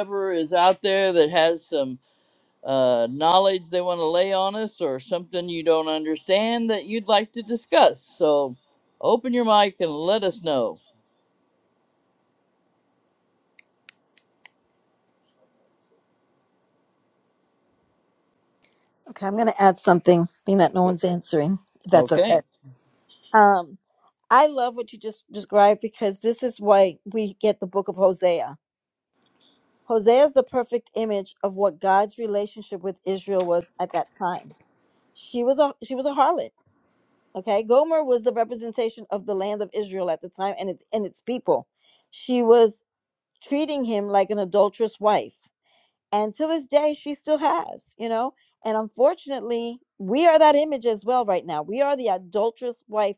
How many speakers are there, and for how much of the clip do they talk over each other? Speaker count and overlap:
2, about 1%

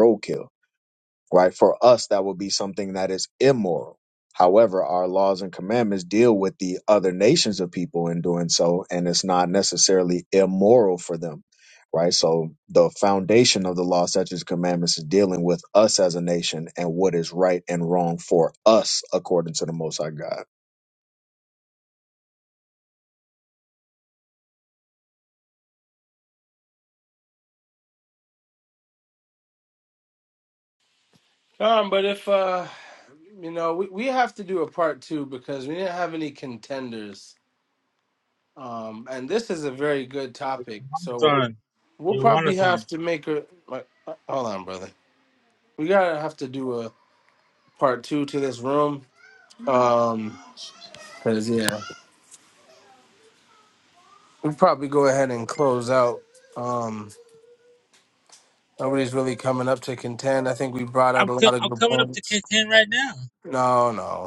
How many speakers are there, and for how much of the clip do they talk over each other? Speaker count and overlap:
3, about 3%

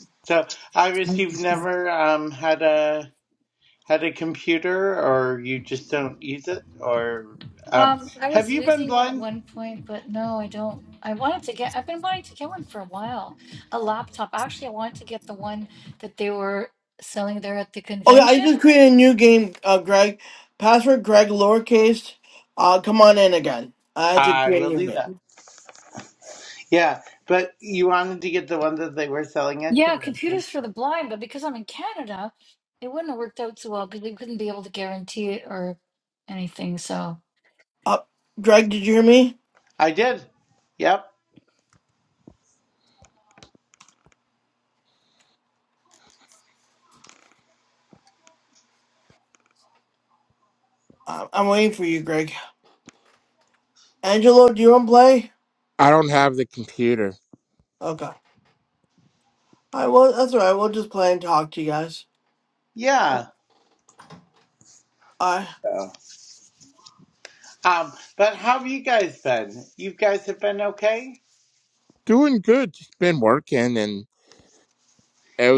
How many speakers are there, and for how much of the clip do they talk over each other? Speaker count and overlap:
4, about 4%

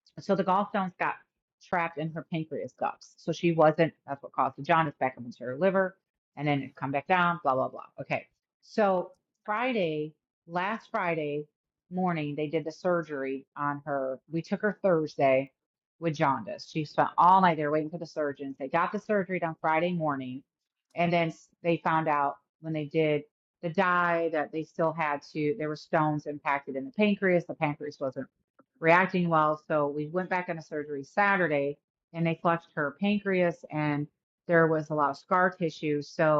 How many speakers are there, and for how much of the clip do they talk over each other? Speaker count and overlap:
1, no overlap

